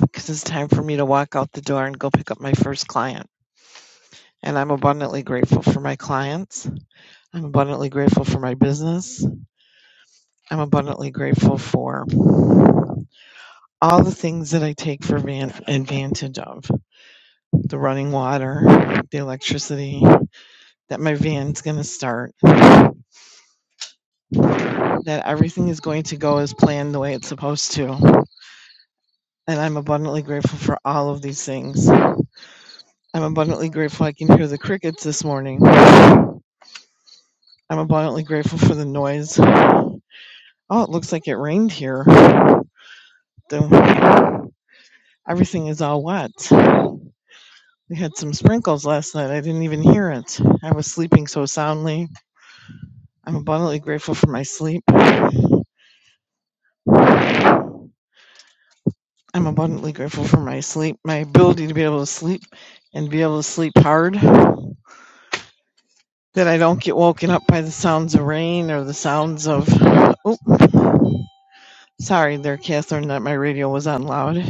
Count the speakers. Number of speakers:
1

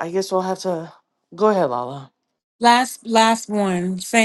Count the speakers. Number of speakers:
2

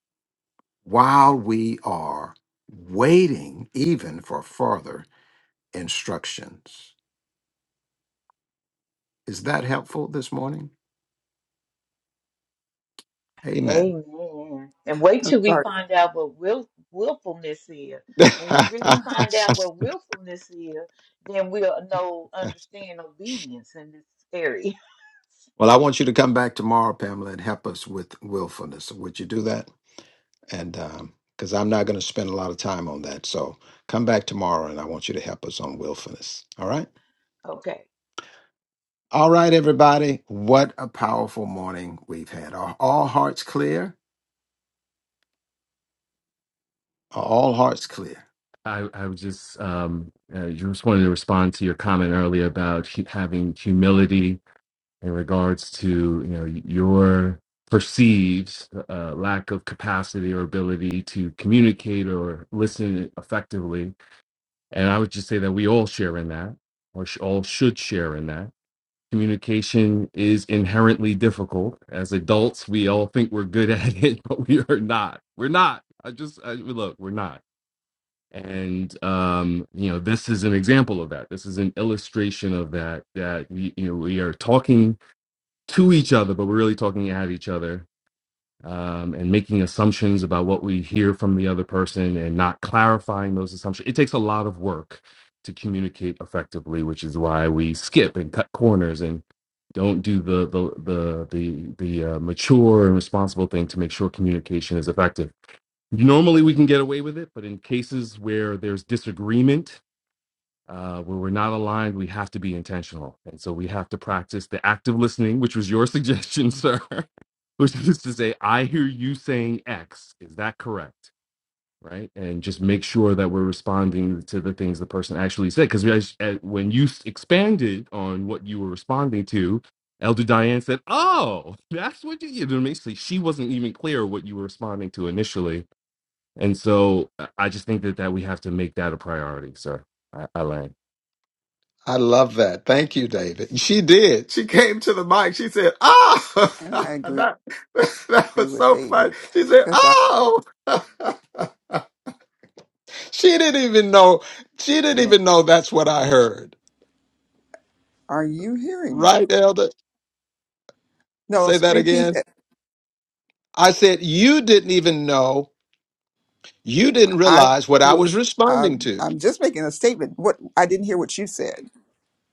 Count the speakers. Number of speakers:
4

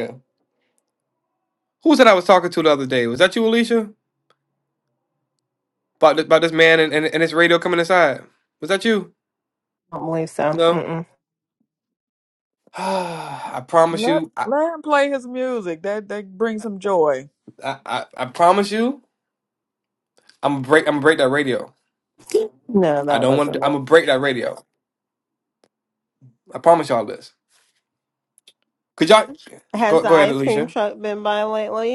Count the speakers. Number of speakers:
3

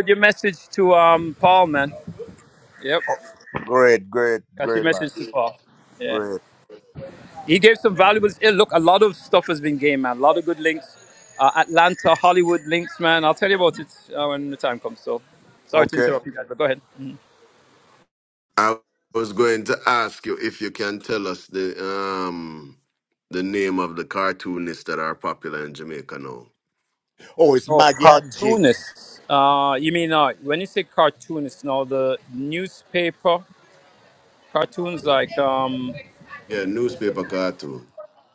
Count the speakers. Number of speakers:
3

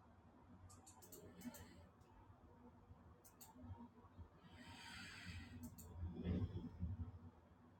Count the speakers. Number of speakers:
0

